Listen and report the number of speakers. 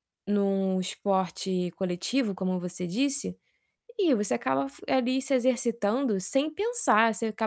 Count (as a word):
one